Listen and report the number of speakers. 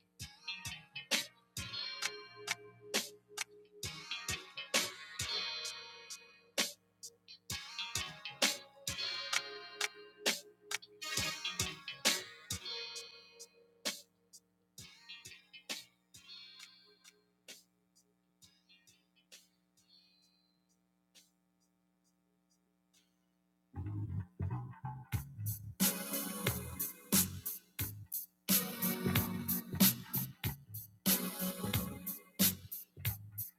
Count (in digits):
0